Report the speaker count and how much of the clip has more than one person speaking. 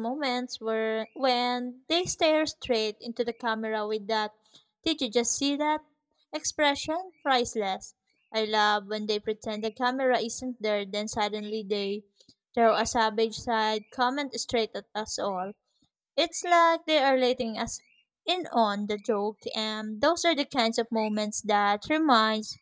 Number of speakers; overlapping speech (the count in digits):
1, no overlap